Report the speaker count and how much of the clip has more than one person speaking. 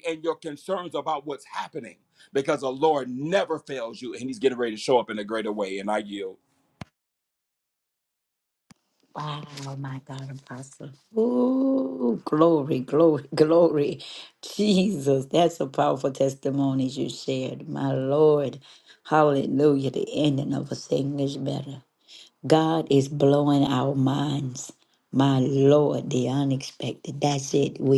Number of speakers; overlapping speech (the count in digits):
2, no overlap